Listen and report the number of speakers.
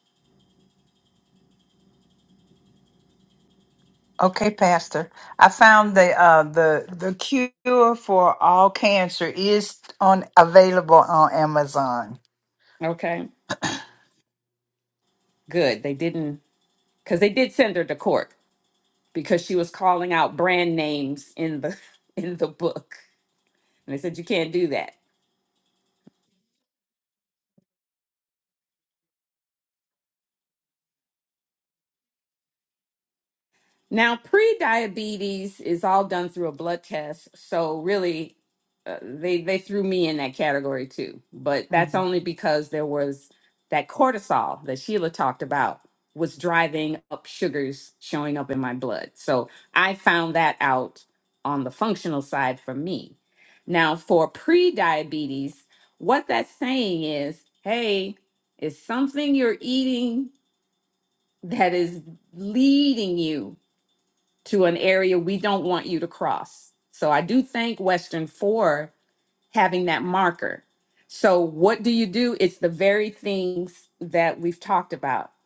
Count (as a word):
two